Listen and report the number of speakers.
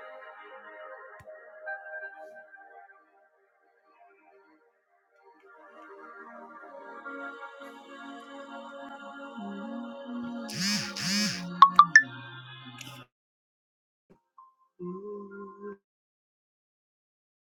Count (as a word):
zero